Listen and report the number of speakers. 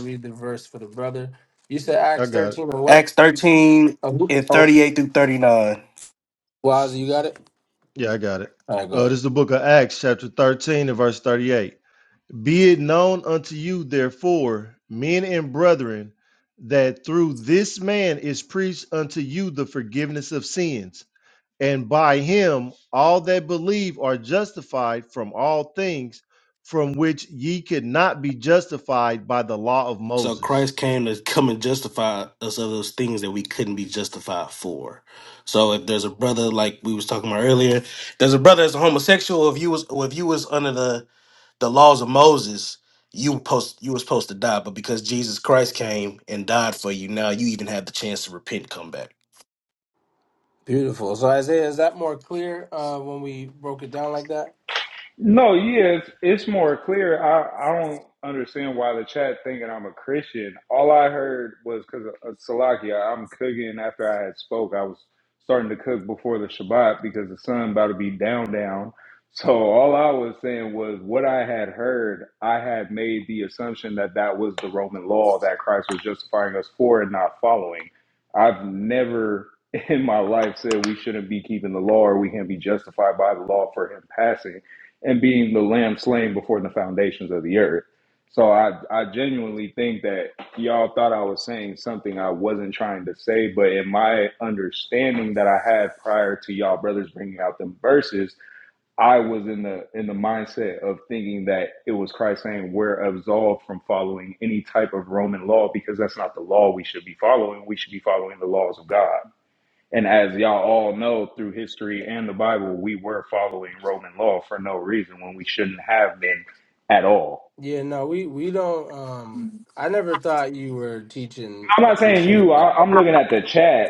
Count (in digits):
4